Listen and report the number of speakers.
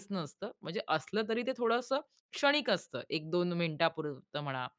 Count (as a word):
one